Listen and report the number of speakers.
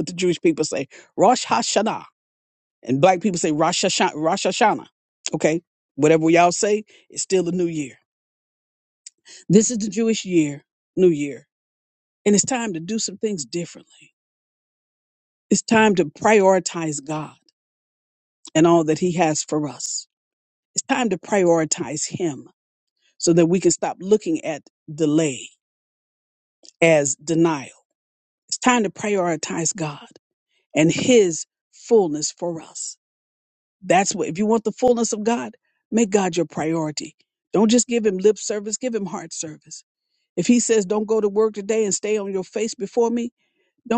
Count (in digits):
1